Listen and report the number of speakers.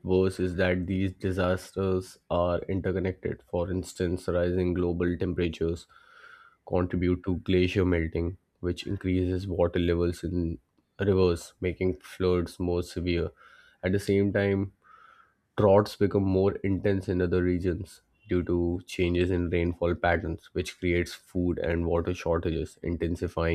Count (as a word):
one